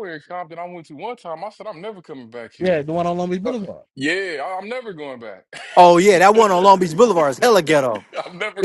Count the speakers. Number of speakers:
three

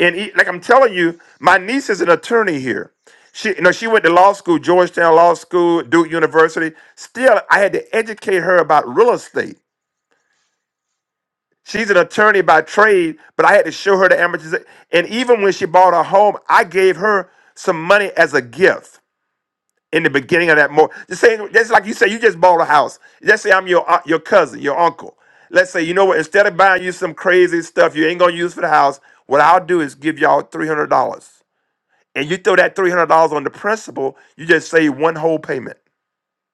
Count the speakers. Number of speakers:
one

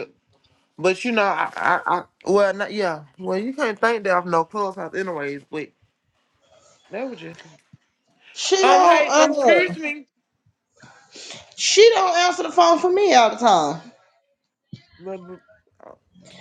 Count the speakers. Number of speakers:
two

